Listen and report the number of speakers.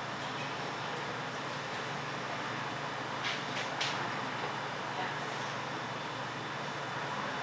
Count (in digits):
0